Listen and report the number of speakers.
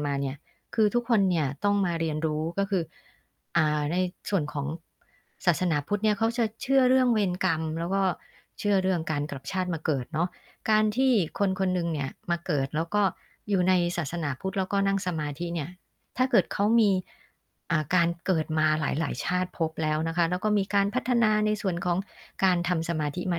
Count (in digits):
1